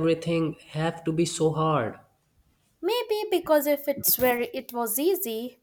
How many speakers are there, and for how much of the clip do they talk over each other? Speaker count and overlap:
two, no overlap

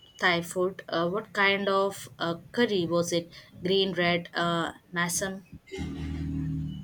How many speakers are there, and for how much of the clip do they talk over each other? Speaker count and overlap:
one, no overlap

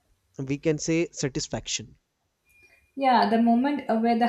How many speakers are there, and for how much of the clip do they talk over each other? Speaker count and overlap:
two, no overlap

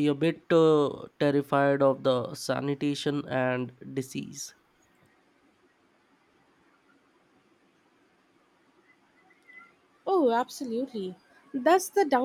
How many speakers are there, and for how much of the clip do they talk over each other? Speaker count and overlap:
two, no overlap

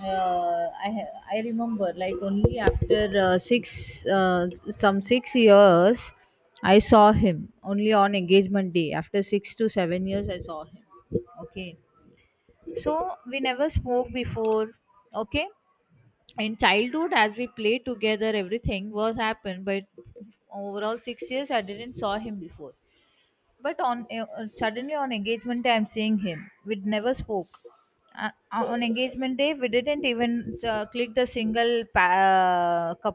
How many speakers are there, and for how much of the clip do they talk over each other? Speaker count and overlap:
one, no overlap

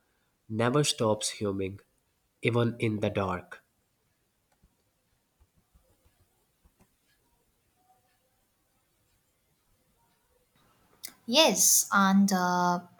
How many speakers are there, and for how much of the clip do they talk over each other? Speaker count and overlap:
two, no overlap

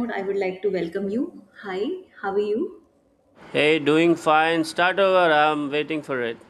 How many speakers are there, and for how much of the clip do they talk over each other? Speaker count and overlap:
two, no overlap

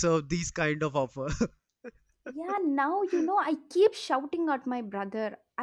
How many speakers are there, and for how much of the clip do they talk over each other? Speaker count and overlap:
two, no overlap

